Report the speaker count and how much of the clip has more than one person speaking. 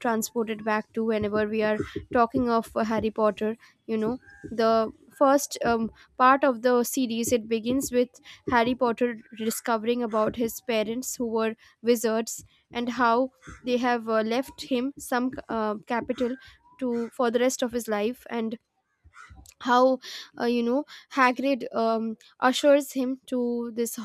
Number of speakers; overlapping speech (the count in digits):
1, no overlap